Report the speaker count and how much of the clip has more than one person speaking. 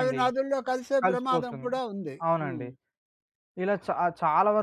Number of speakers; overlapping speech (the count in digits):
2, about 30%